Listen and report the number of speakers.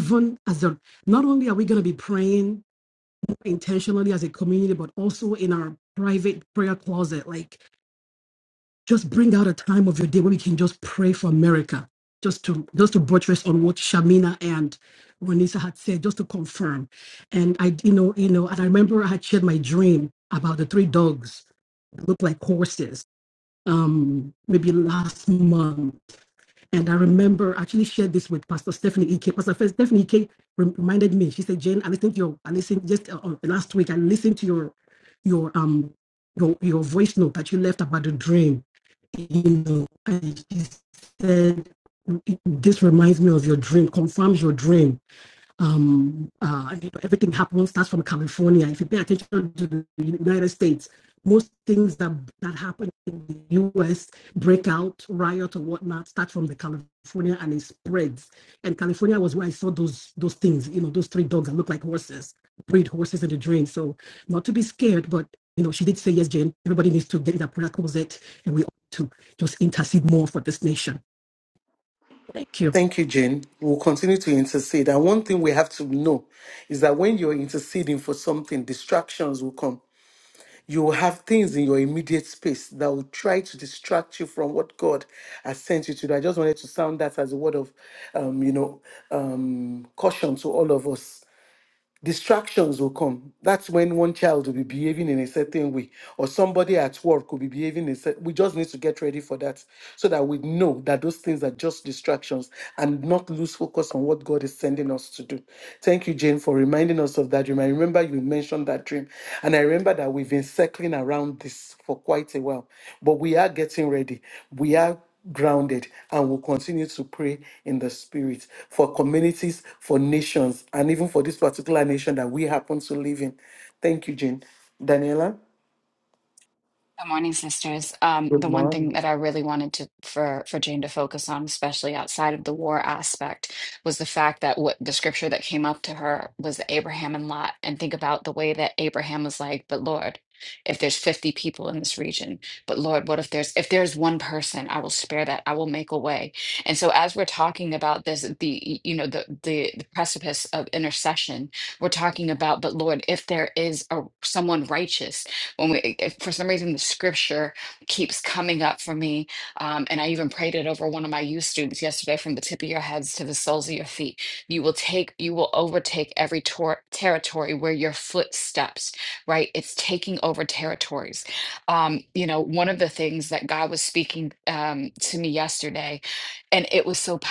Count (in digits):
3